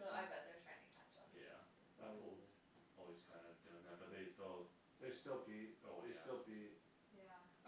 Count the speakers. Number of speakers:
three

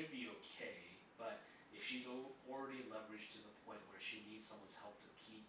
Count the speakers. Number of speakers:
one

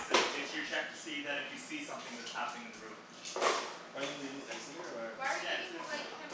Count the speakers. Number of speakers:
three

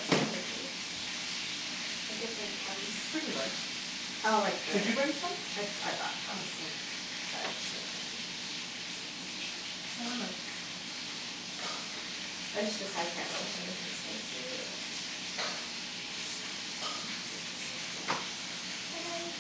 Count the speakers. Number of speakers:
two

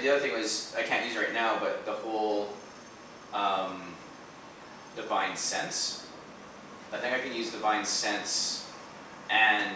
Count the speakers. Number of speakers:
one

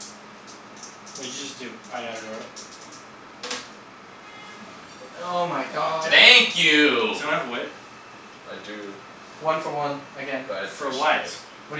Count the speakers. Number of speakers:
four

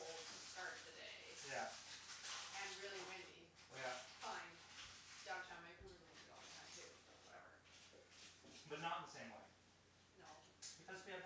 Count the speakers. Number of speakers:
two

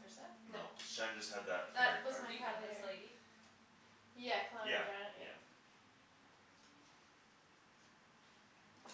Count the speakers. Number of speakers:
three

